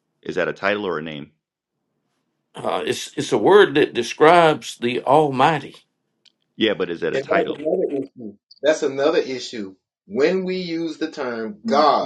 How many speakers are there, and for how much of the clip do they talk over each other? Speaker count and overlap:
three, about 4%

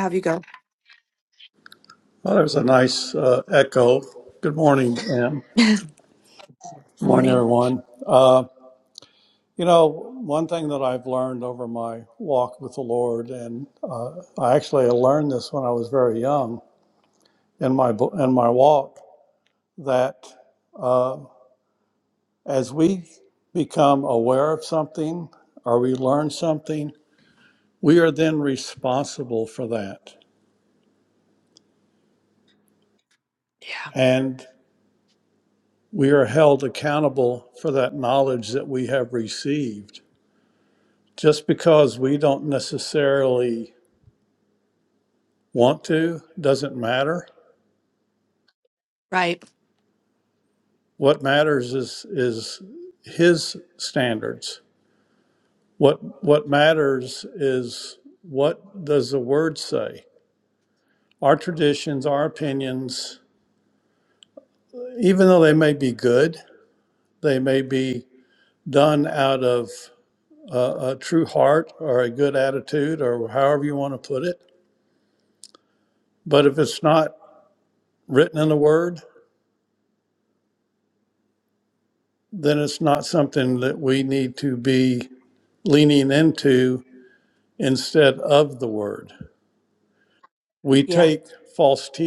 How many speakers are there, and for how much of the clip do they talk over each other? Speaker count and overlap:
two, about 1%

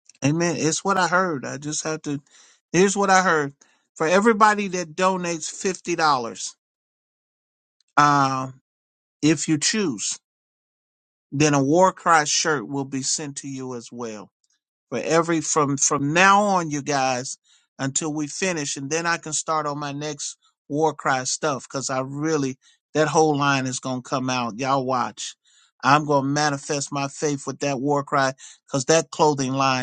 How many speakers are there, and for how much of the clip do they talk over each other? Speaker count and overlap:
one, no overlap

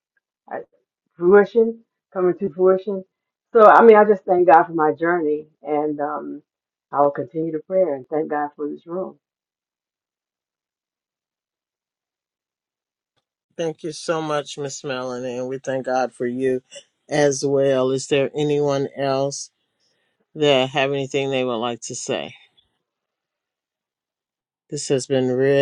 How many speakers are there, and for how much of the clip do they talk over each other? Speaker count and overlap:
two, no overlap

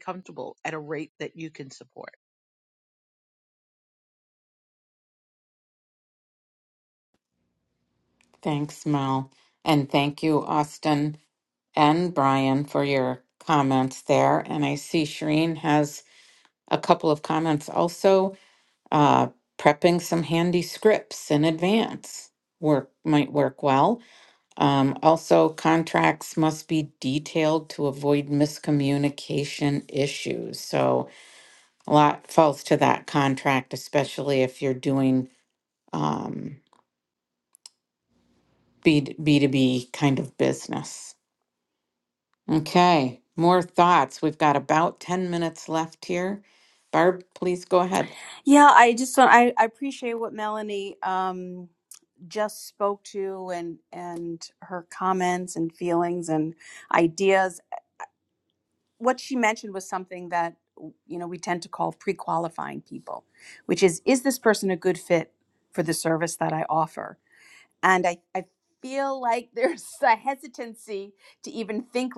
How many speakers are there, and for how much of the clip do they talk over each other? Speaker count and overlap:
three, no overlap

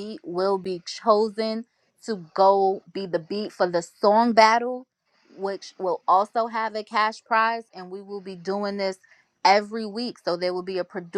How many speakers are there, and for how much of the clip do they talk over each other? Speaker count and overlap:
one, no overlap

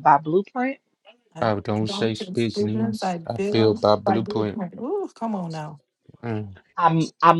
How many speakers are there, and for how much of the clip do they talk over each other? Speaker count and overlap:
three, about 38%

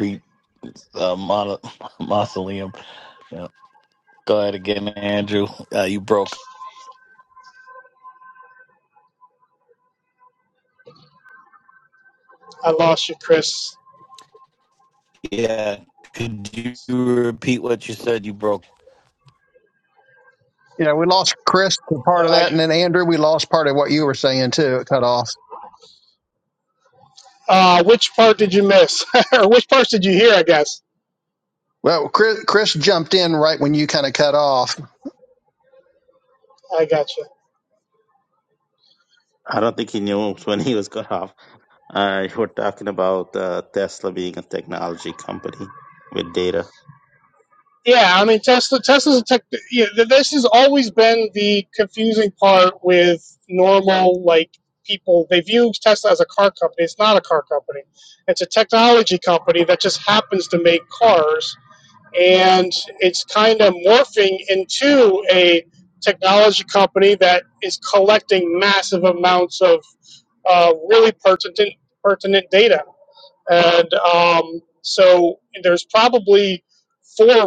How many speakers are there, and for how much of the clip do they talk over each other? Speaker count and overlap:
four, under 1%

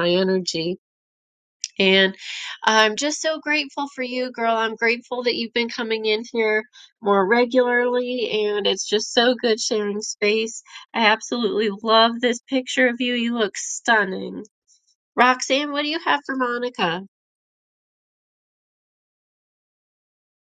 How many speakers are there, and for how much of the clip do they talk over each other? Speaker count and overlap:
one, no overlap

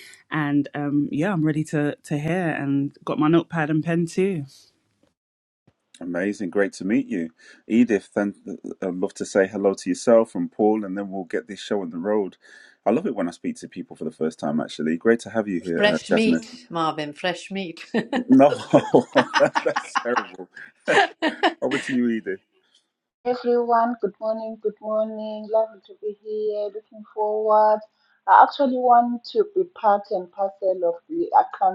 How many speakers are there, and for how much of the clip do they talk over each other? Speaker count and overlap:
four, about 2%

